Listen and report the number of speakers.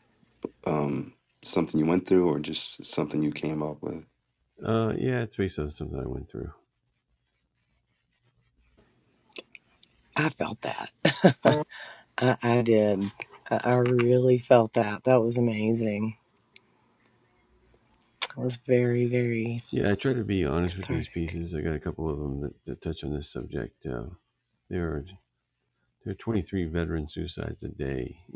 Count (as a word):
three